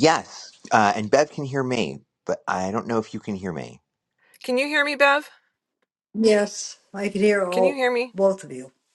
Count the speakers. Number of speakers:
3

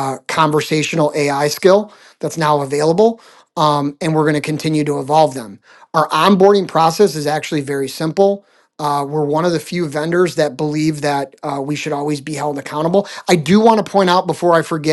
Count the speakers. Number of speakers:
1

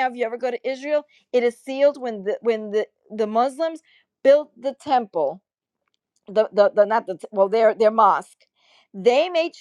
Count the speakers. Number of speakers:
1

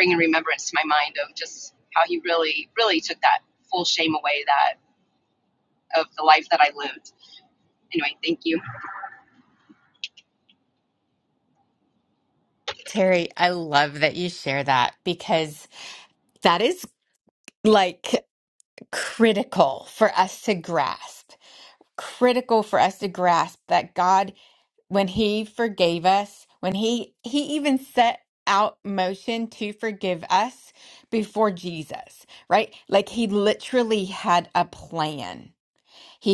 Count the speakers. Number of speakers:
2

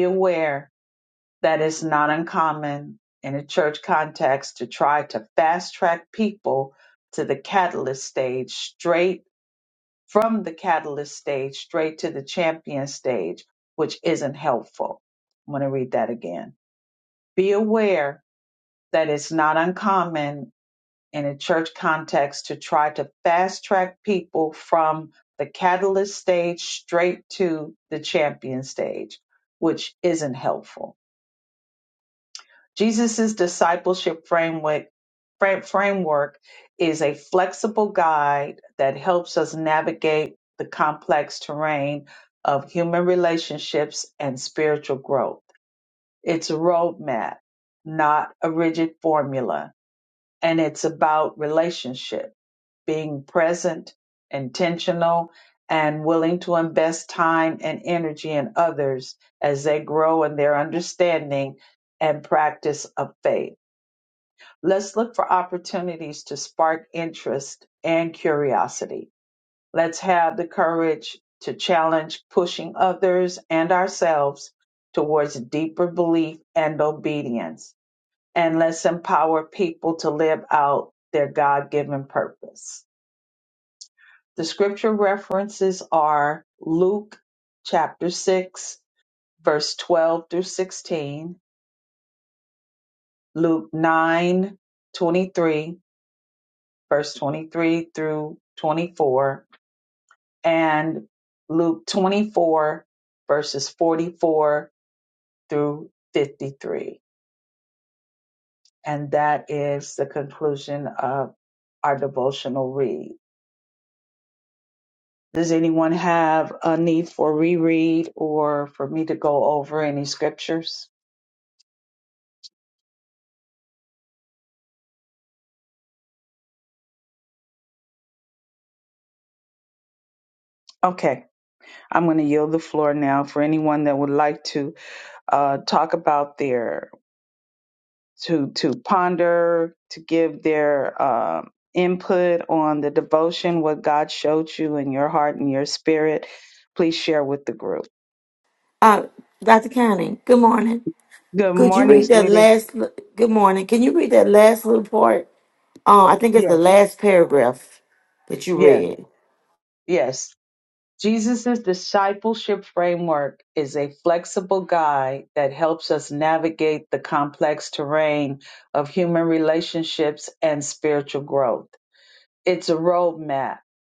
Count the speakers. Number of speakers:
2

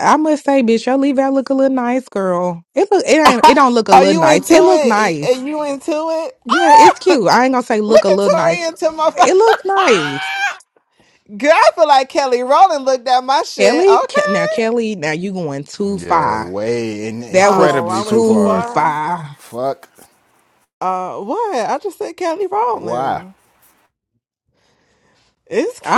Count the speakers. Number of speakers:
3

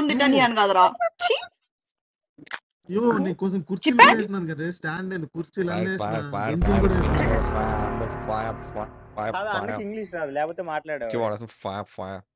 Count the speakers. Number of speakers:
4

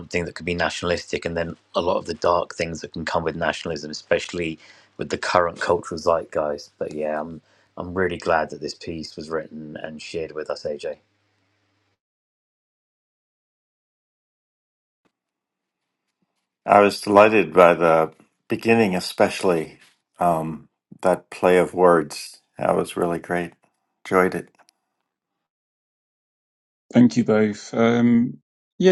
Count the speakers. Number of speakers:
3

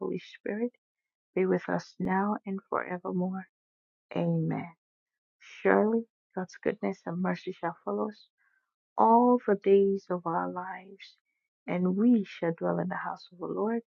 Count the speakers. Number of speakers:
1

